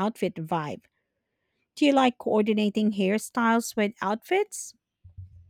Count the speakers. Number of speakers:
1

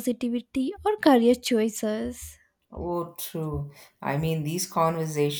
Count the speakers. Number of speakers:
2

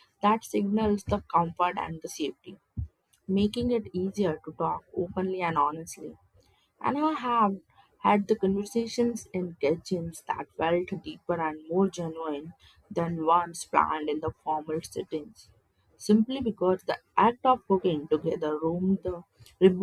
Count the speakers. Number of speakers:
1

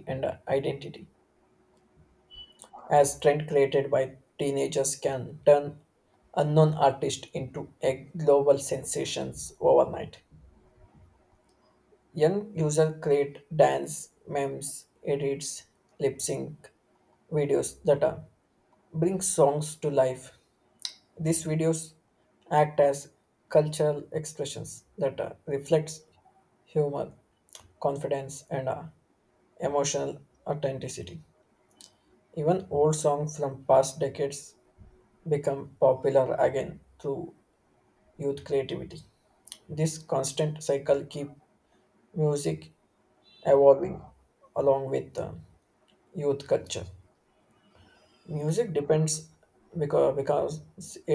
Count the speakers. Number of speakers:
1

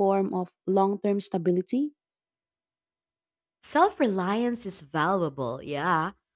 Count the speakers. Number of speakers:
2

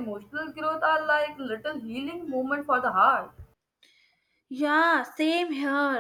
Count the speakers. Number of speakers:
2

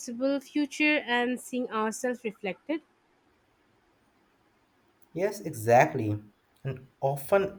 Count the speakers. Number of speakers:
2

